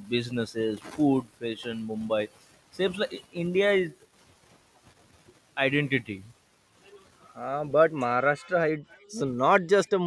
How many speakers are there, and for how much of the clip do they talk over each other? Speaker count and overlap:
two, no overlap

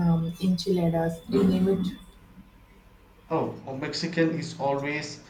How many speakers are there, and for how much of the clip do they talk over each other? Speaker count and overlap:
two, no overlap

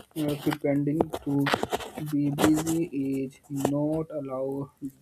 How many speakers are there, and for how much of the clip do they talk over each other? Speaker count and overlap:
one, no overlap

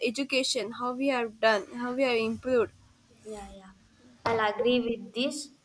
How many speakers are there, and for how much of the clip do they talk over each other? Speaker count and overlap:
two, no overlap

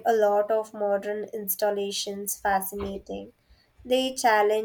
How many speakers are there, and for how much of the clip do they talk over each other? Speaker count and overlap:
one, no overlap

